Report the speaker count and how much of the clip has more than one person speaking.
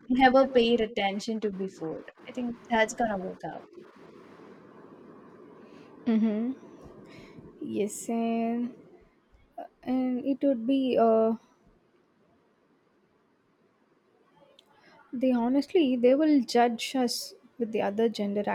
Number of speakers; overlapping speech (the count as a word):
two, no overlap